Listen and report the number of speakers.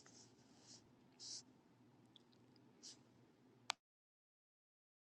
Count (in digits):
0